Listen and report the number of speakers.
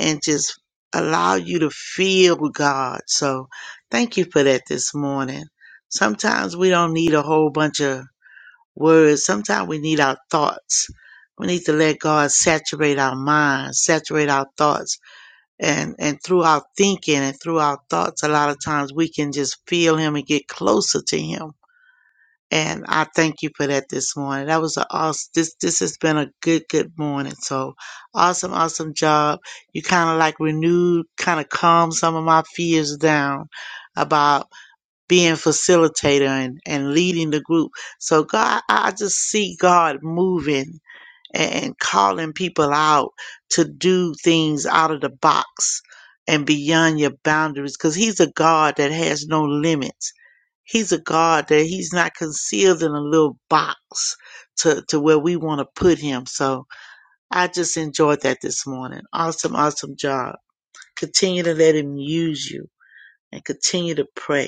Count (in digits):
1